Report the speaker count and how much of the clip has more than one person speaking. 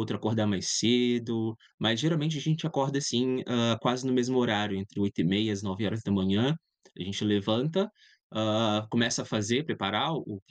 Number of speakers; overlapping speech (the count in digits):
1, no overlap